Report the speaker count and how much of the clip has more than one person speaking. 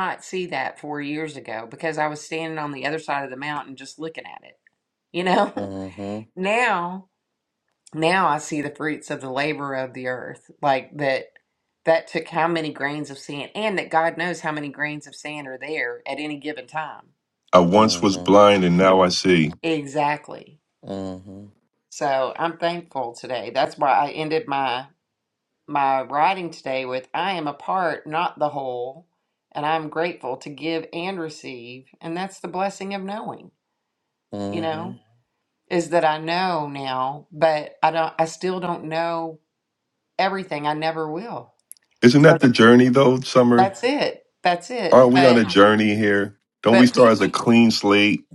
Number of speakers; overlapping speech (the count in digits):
3, about 5%